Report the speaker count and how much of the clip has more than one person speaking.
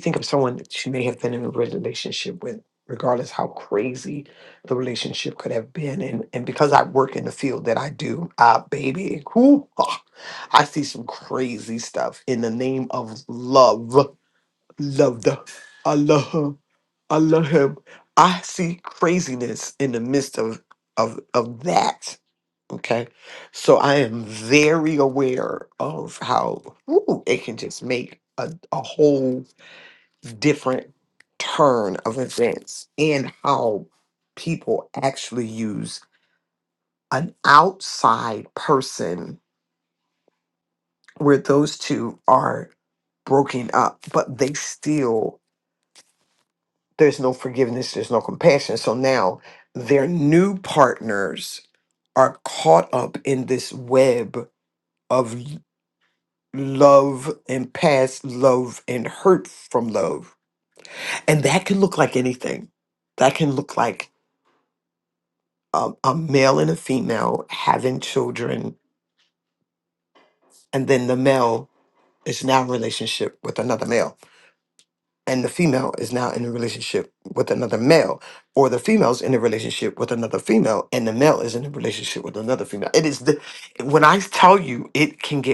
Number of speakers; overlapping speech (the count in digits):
1, no overlap